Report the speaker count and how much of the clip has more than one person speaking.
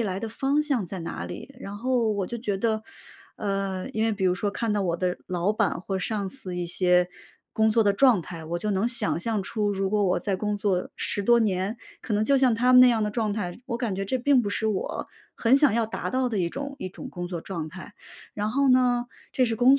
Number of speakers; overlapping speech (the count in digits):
1, no overlap